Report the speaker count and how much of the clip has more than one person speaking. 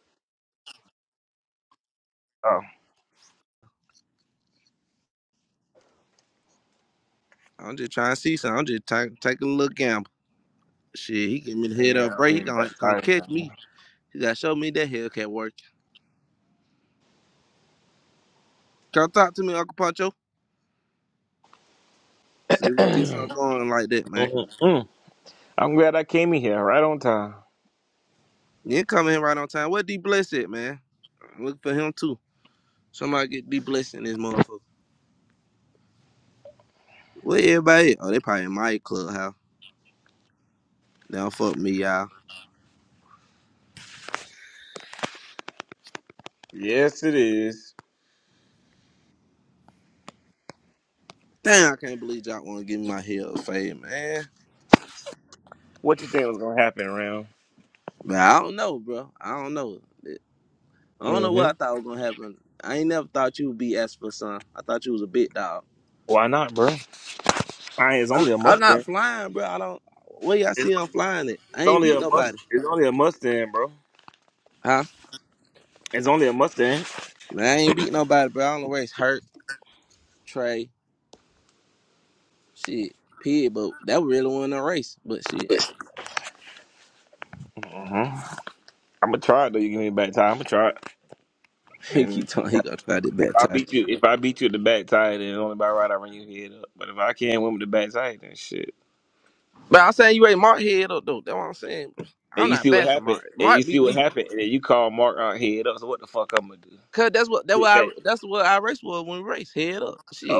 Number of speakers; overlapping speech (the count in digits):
2, about 6%